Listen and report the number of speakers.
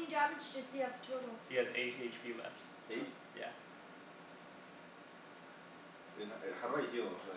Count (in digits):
3